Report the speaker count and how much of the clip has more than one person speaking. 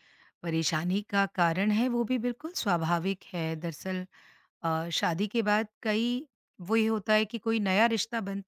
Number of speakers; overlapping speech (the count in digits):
1, no overlap